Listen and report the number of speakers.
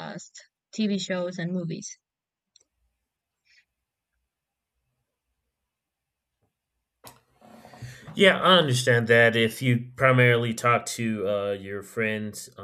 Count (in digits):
2